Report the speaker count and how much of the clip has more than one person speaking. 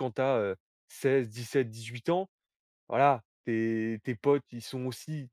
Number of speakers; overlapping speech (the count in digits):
1, no overlap